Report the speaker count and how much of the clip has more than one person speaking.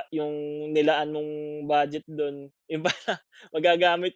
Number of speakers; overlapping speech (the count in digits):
1, no overlap